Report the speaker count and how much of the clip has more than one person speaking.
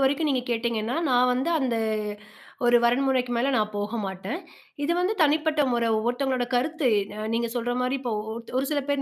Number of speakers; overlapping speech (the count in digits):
1, no overlap